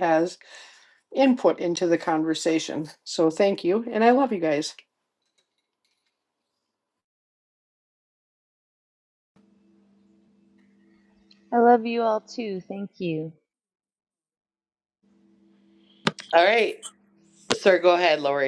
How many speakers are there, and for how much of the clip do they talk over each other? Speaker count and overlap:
3, no overlap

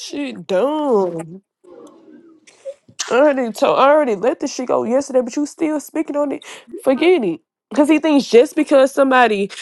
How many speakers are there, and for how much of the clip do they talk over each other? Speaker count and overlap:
1, no overlap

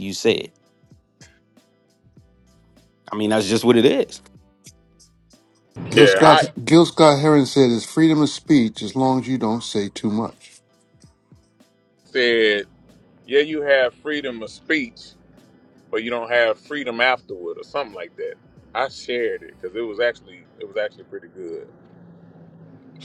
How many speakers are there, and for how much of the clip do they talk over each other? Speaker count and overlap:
3, about 3%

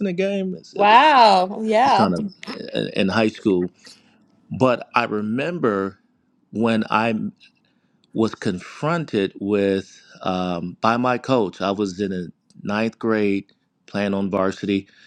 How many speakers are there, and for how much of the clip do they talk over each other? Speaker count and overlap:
2, about 5%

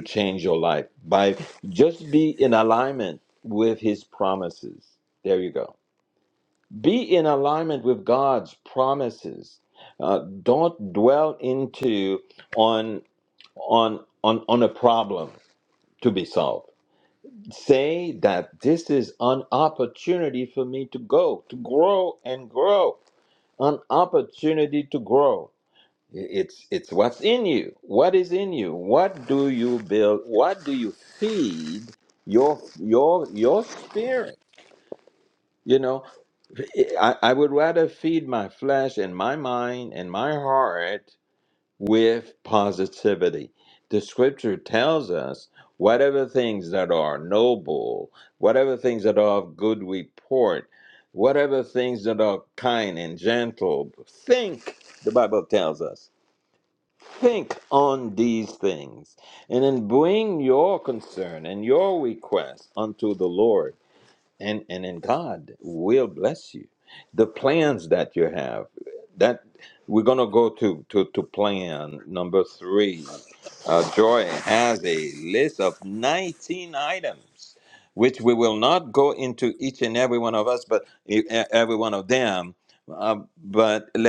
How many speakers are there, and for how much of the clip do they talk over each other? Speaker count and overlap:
1, no overlap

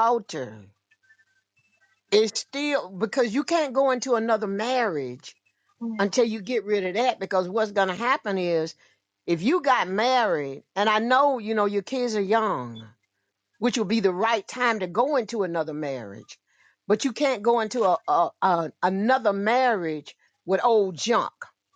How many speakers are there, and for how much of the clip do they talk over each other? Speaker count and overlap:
1, no overlap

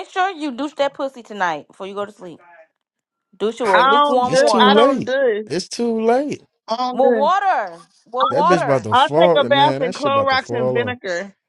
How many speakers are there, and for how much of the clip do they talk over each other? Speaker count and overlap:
3, about 37%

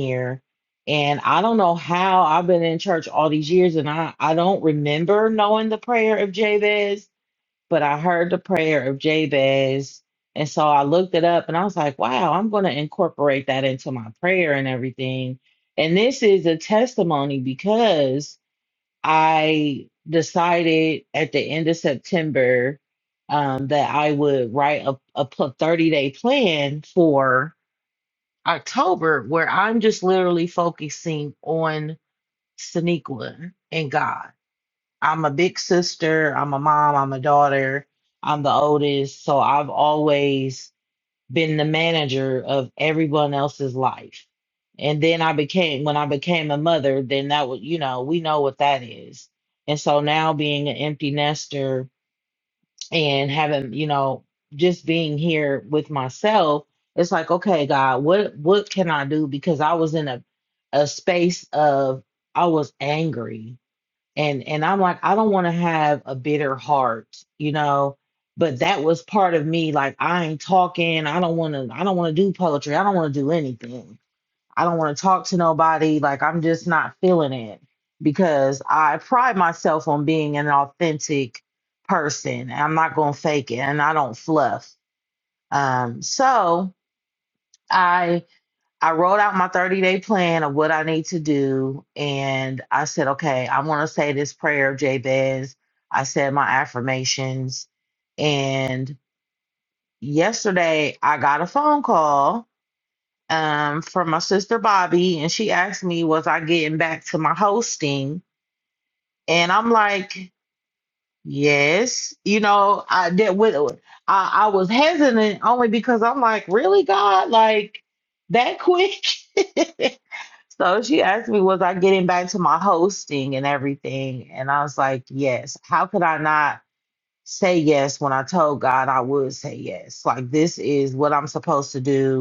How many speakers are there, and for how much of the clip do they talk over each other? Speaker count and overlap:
1, no overlap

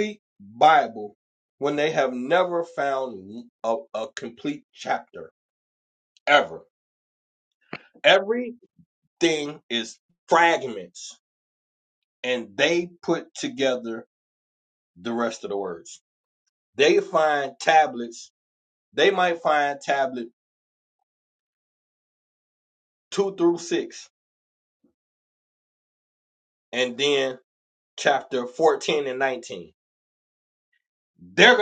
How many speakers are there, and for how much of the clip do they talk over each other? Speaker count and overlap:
1, no overlap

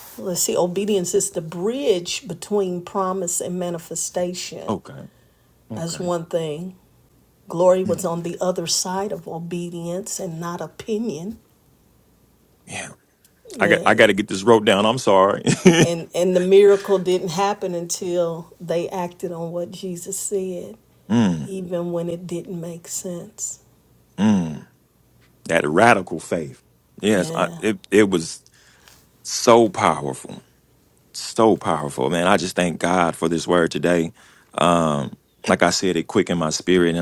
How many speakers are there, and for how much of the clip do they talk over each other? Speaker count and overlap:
2, about 4%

